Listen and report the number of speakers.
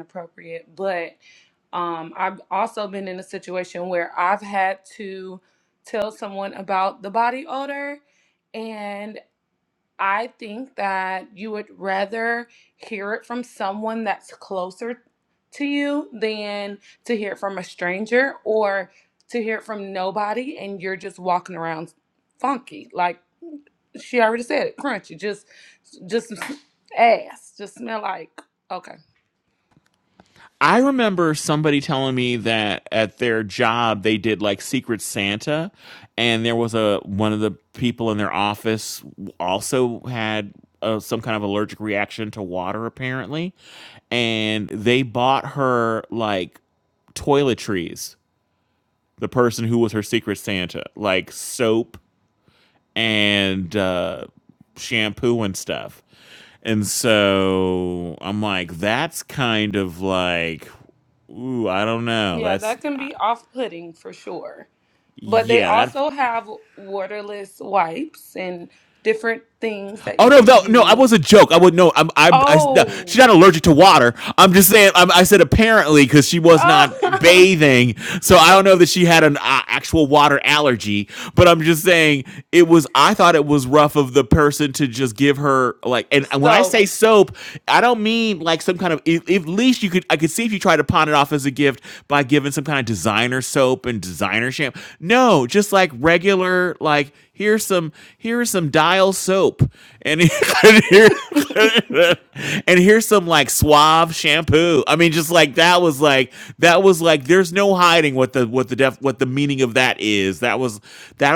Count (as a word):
two